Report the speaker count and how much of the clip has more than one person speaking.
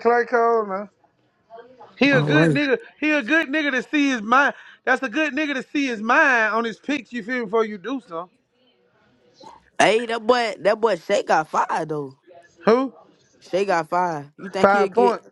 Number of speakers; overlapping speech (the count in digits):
2, about 7%